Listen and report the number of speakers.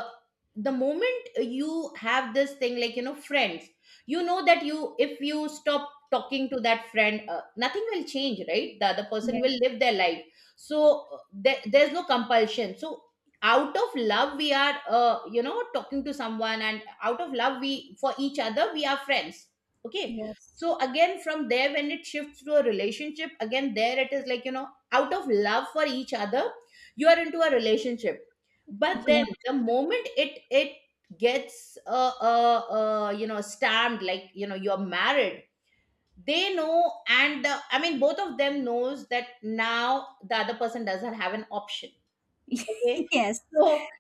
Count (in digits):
2